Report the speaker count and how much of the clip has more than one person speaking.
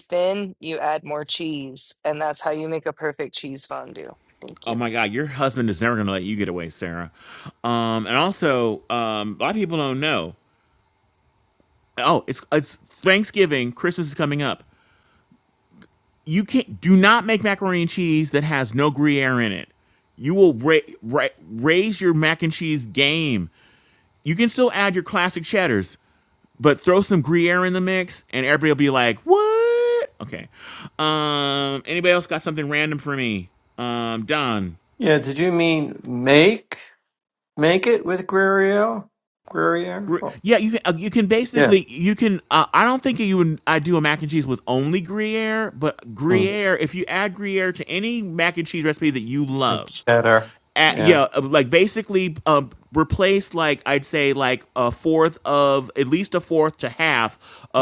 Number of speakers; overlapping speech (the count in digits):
3, about 2%